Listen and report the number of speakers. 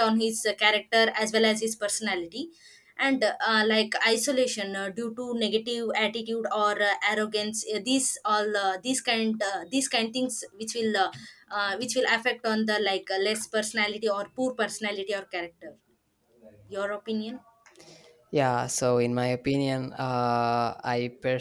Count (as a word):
two